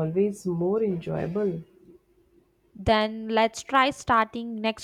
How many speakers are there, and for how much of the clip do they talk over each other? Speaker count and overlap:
2, no overlap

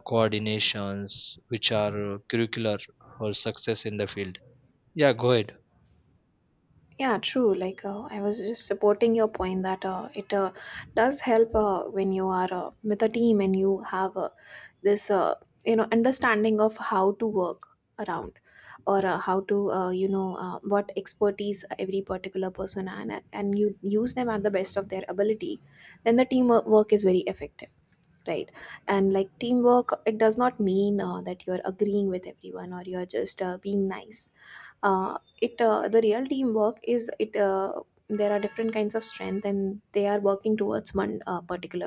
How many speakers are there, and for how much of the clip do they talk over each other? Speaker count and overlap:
2, no overlap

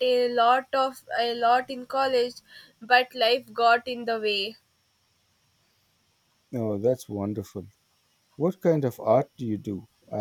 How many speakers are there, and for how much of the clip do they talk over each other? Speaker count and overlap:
2, no overlap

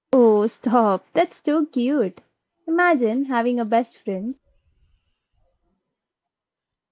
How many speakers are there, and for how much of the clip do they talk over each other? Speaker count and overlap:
1, no overlap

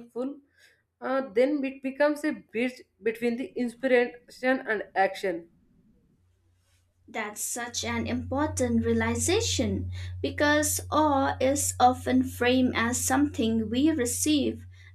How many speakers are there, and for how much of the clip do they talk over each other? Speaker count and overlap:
2, no overlap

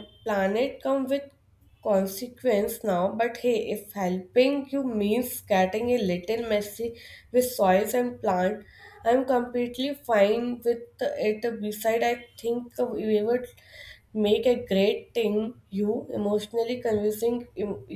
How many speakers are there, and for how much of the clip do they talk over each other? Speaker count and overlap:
1, no overlap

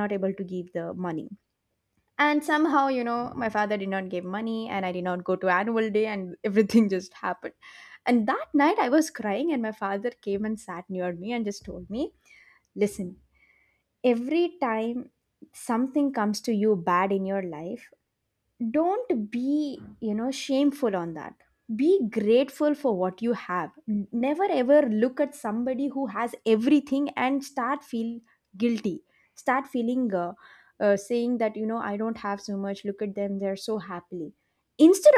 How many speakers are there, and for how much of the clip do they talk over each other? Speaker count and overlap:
1, no overlap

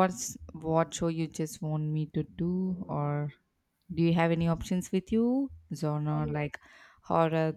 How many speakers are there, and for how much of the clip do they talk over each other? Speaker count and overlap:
1, no overlap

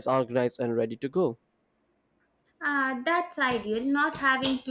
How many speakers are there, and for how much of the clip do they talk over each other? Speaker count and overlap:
2, no overlap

